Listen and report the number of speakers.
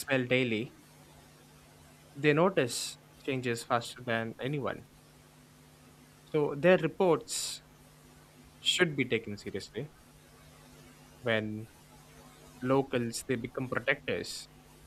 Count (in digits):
1